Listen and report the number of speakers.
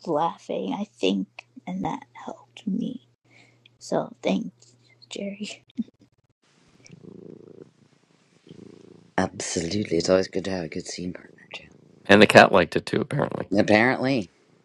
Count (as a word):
three